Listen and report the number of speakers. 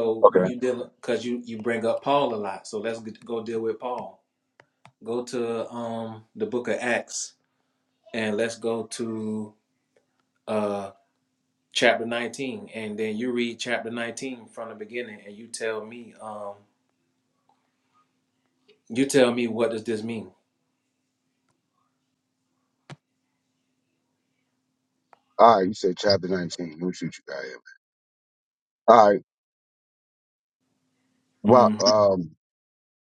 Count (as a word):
two